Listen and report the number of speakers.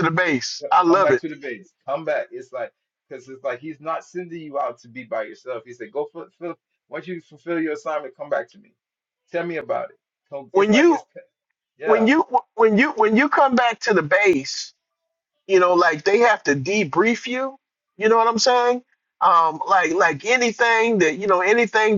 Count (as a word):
two